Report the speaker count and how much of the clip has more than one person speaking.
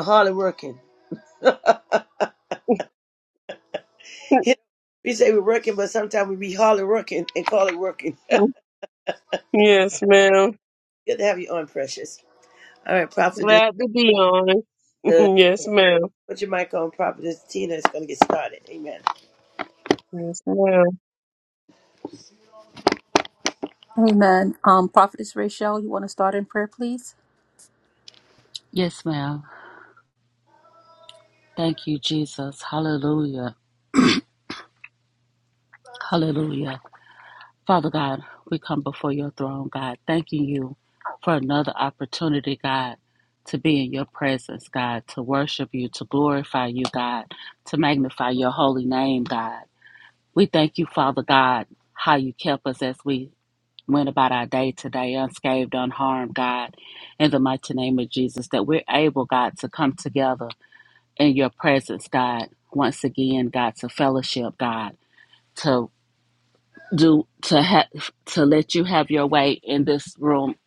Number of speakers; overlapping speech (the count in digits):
4, under 1%